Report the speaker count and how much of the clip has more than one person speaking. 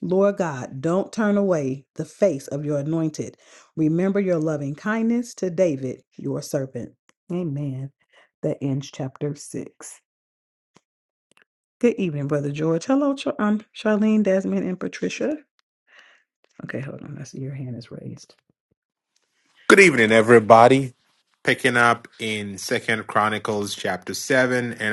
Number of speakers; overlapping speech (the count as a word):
two, no overlap